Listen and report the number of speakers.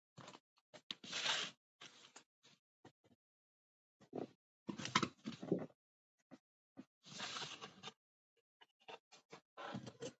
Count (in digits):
0